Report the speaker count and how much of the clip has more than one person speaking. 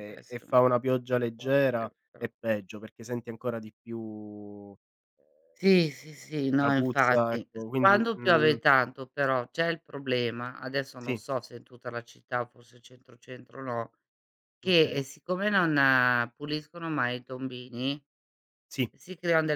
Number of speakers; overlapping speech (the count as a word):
two, about 16%